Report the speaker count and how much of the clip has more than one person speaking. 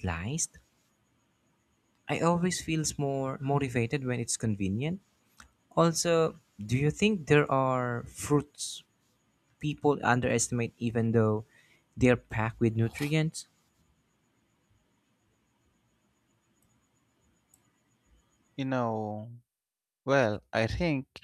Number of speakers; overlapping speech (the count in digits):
2, no overlap